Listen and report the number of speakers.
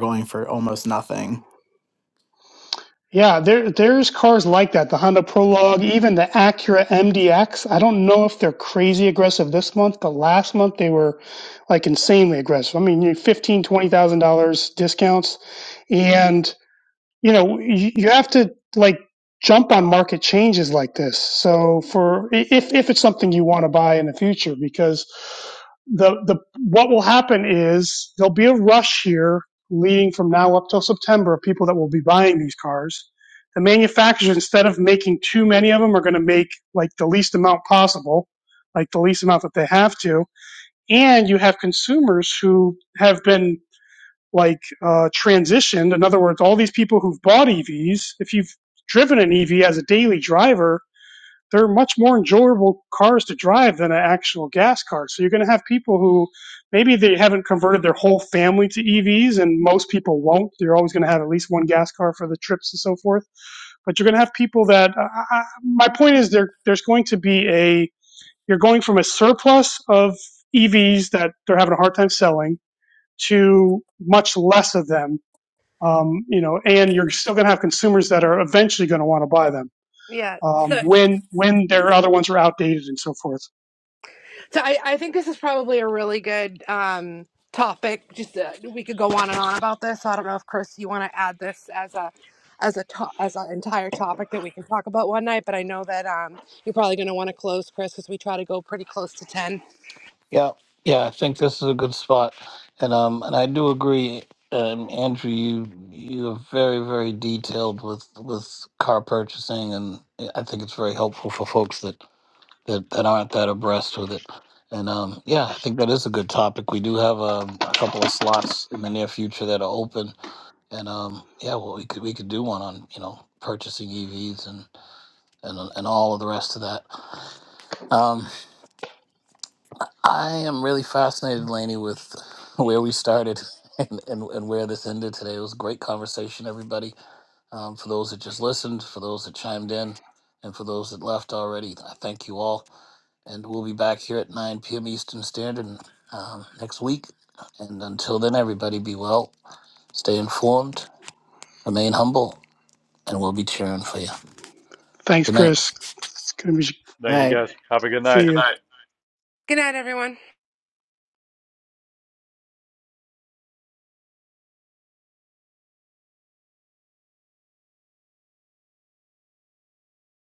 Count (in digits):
5